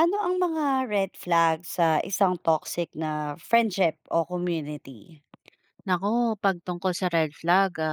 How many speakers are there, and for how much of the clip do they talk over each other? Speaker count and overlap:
2, no overlap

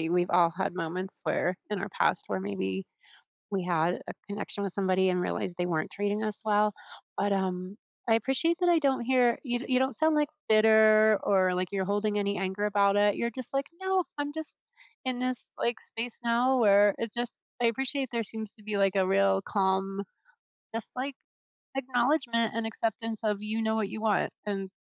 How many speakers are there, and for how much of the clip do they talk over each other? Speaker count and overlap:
1, no overlap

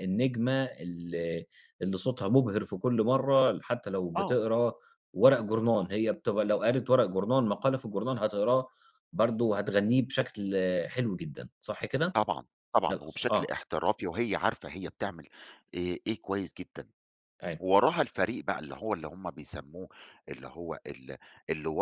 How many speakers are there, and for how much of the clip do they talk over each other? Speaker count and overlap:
2, about 4%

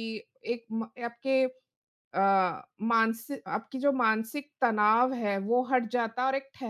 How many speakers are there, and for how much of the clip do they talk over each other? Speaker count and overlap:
1, no overlap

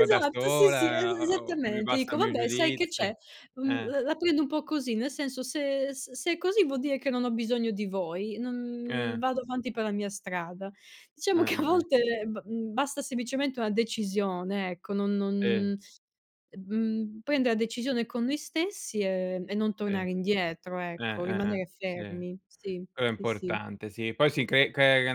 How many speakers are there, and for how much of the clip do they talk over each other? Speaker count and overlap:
2, about 22%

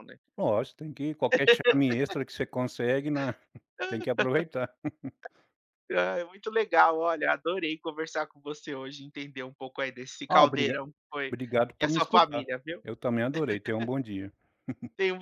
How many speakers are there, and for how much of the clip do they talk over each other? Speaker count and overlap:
2, about 7%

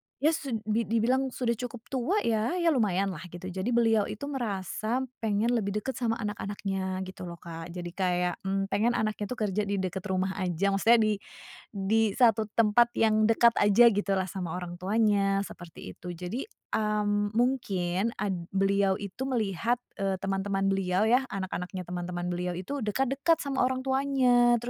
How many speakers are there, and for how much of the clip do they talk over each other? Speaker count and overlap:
1, no overlap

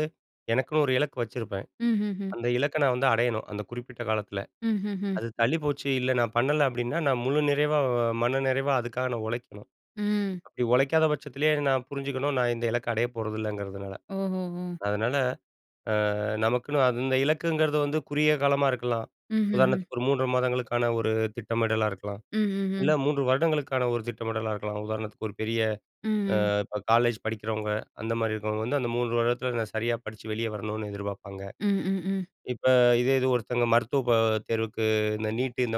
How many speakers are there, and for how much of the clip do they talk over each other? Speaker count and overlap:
2, about 2%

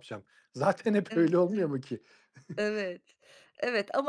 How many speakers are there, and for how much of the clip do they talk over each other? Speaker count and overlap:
2, about 5%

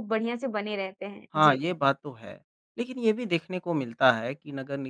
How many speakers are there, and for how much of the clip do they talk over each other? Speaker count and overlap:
2, about 5%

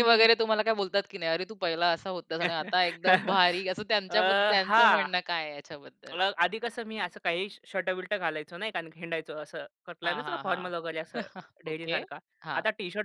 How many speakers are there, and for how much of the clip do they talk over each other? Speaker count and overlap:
2, about 14%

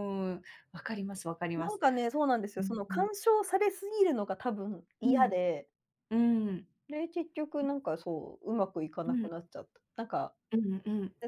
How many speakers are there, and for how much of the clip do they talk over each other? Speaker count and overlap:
2, about 11%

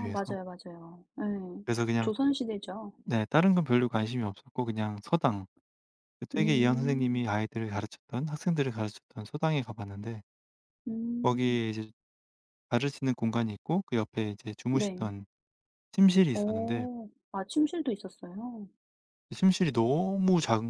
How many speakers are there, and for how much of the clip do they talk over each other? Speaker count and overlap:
2, about 12%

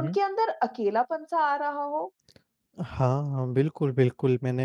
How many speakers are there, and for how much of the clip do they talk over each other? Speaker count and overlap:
2, about 4%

